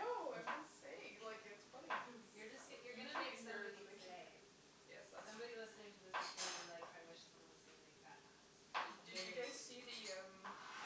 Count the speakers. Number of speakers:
two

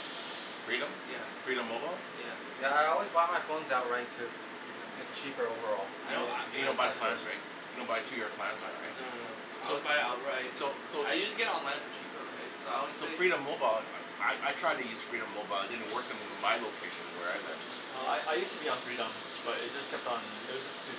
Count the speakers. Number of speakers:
four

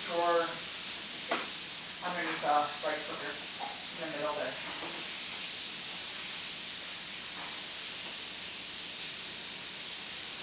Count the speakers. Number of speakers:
one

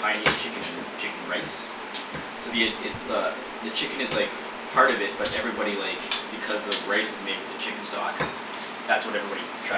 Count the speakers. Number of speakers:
one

